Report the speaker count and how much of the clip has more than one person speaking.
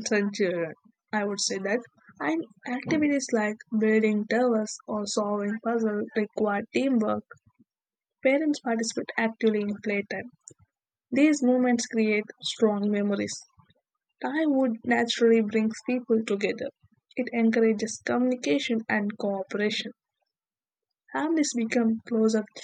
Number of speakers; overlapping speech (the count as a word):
one, no overlap